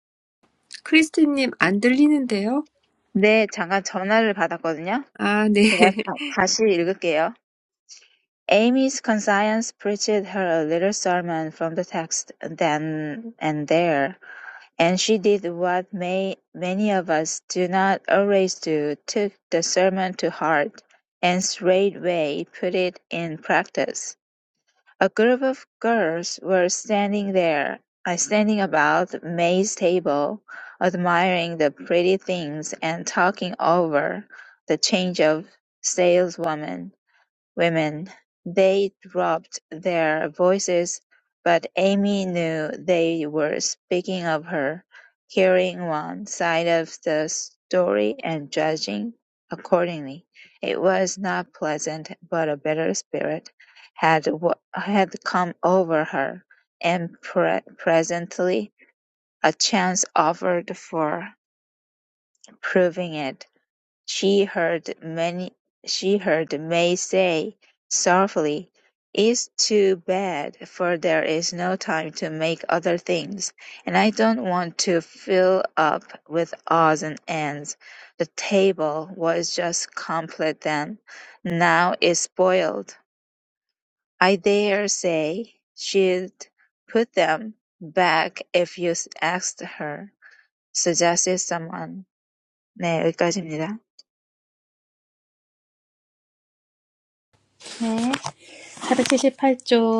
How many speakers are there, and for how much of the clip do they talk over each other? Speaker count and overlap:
3, no overlap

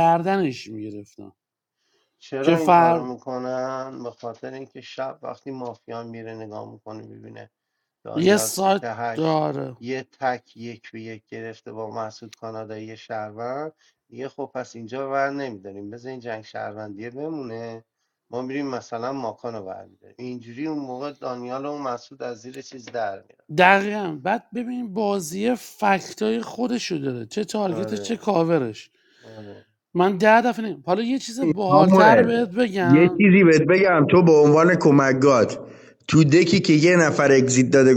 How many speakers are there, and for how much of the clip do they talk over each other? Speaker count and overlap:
3, about 8%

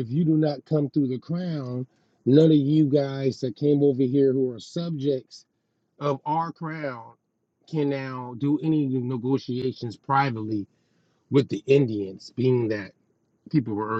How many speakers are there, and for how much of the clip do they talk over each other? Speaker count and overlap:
1, no overlap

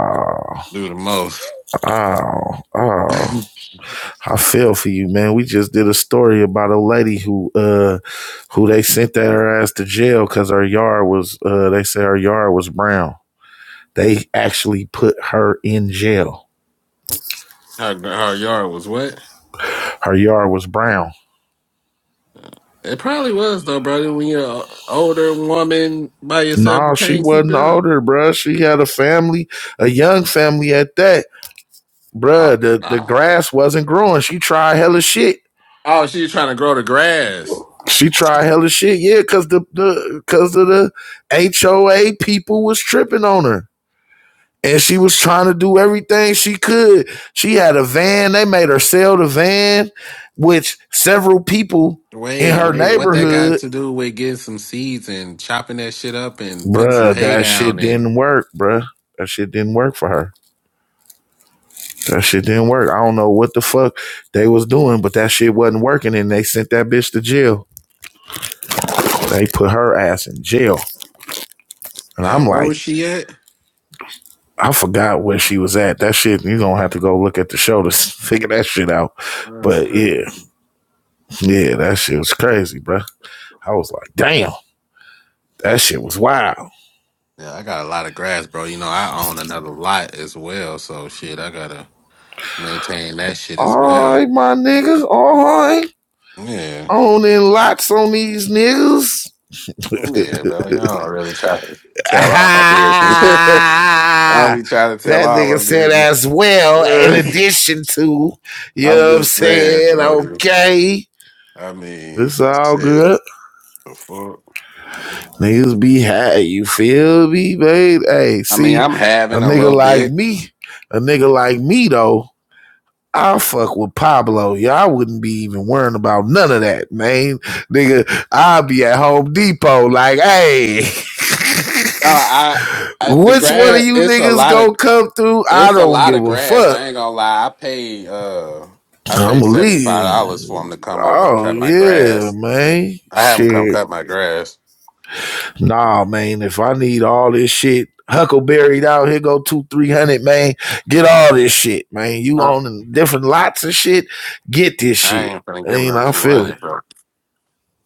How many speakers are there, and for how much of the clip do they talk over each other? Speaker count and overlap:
2, about 13%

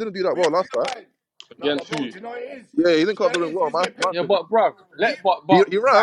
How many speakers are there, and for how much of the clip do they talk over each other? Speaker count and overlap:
3, about 48%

